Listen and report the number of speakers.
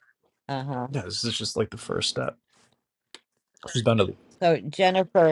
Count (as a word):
two